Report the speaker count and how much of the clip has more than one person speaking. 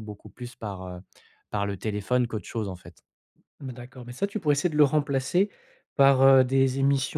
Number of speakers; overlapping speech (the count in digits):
2, no overlap